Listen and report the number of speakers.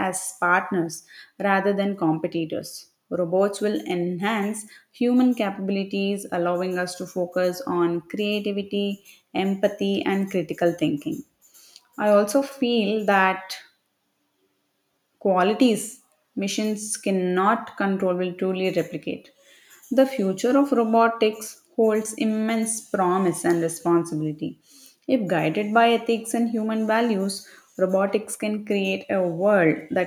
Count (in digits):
1